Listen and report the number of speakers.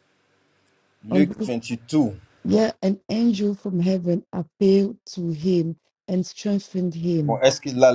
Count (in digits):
2